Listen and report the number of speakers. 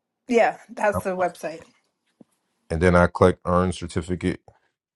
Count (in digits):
2